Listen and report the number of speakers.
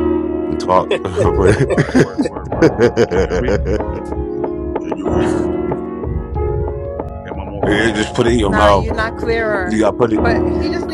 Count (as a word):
three